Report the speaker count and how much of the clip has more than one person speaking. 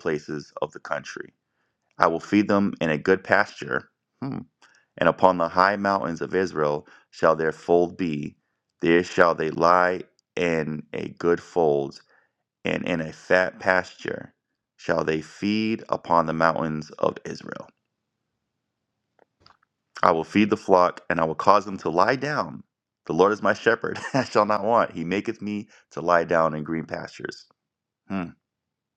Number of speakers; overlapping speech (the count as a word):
one, no overlap